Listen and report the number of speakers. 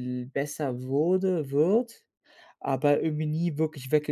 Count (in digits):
1